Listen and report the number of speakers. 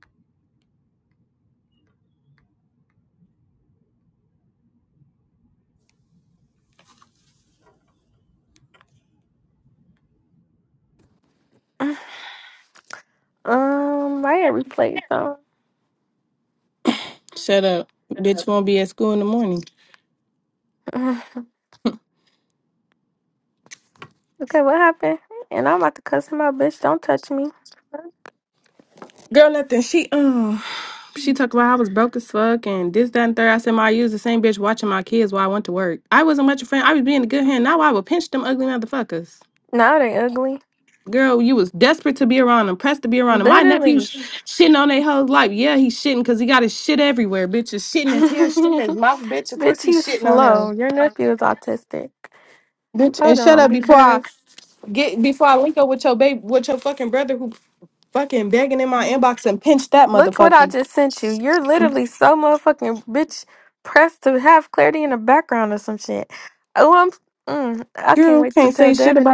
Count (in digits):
2